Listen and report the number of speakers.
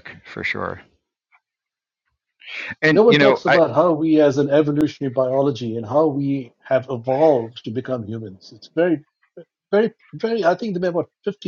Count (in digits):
2